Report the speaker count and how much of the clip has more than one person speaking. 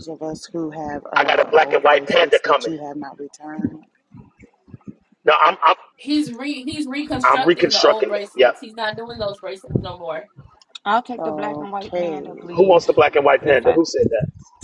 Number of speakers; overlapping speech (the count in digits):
4, about 32%